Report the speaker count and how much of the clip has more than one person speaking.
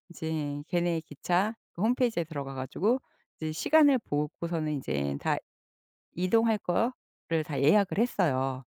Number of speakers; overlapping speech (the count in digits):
1, no overlap